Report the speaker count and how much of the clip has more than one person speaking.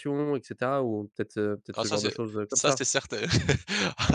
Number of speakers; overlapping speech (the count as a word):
two, about 16%